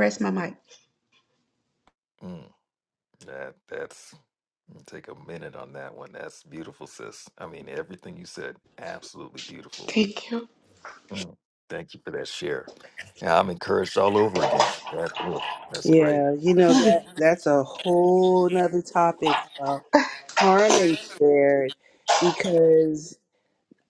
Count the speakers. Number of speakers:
3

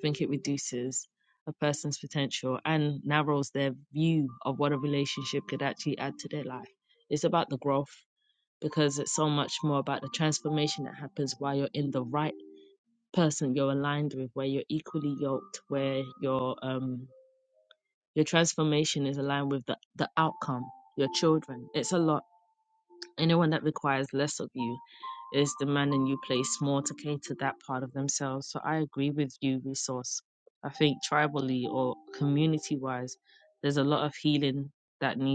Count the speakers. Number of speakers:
1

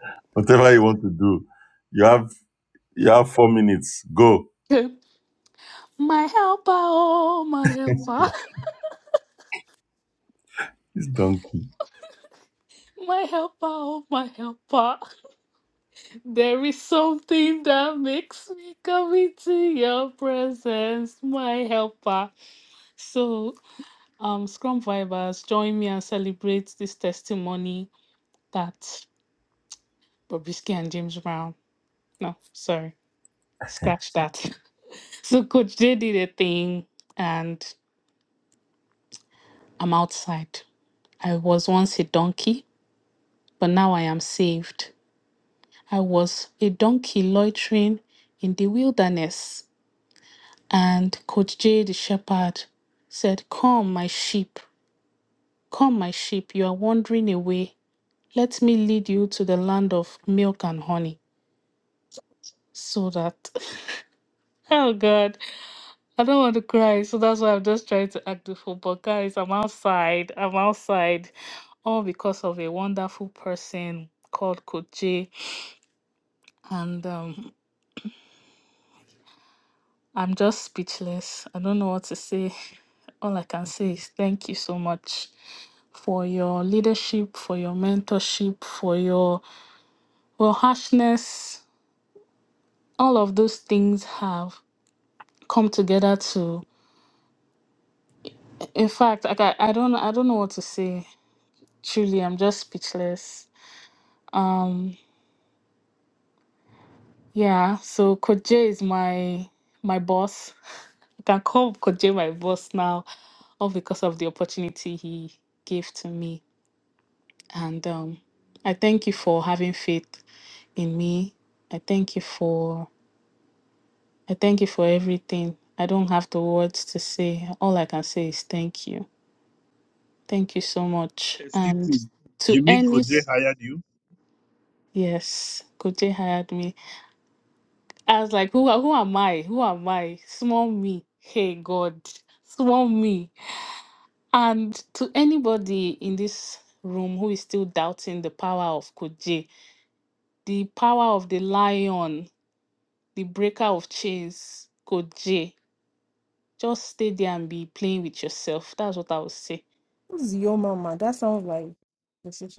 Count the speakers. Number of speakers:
4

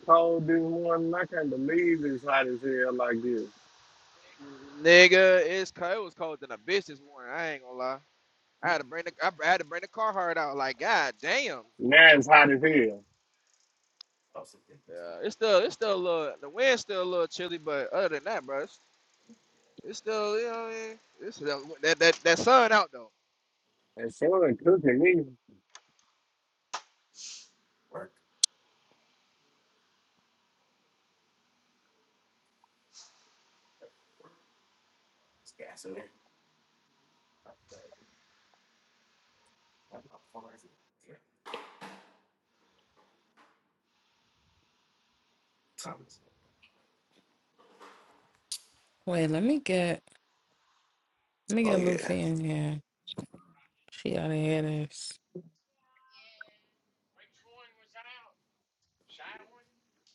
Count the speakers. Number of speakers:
4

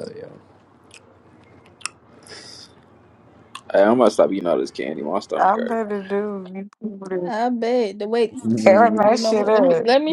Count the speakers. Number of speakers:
3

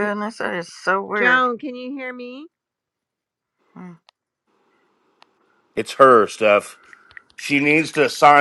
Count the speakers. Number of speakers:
3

